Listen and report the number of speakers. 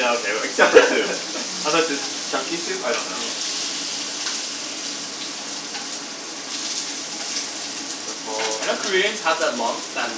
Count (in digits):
2